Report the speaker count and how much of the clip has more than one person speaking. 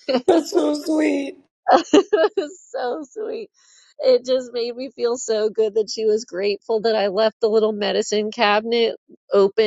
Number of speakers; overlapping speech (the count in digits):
2, no overlap